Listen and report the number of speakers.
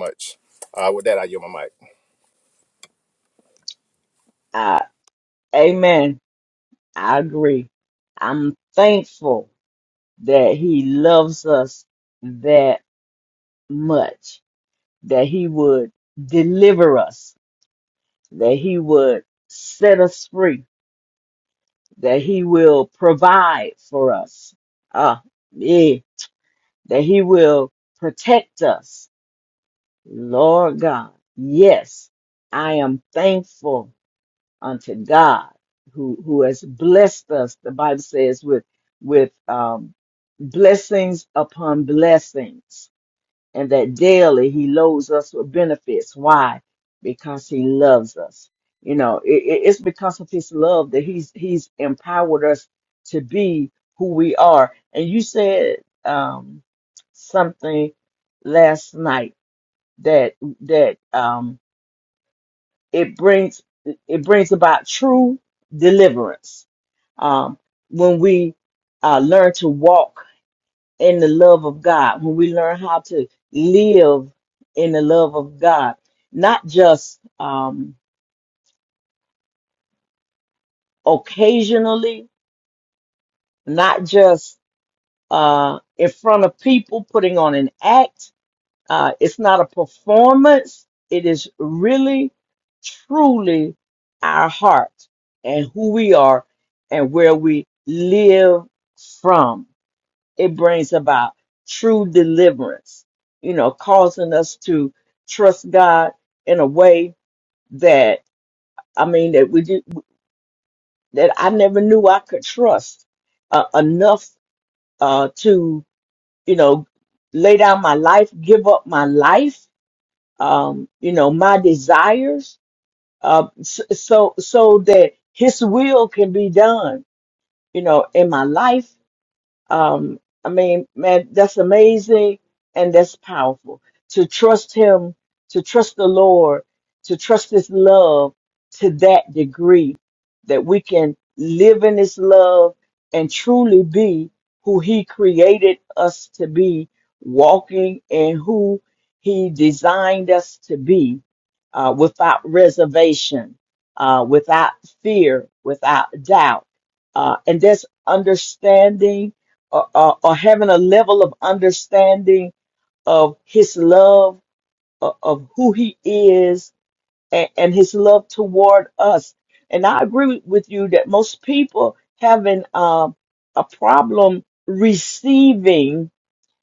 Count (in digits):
2